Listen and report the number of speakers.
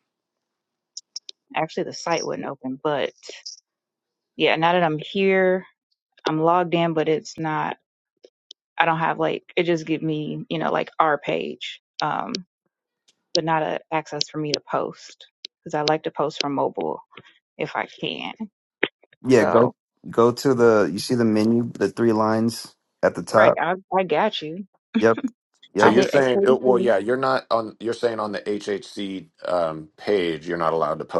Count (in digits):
3